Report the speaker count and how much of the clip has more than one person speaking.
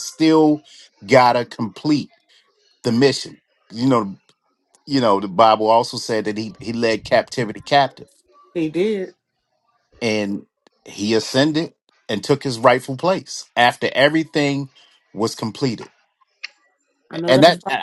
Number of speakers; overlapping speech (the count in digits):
2, about 2%